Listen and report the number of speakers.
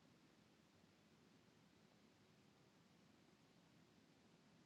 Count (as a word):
zero